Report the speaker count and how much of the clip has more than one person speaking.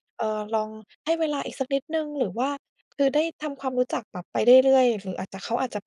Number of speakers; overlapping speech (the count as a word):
one, no overlap